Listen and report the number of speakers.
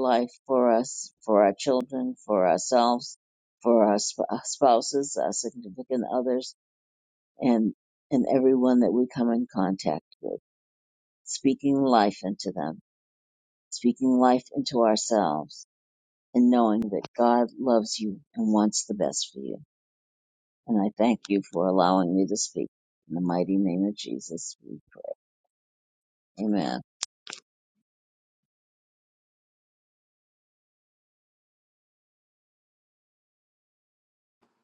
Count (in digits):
1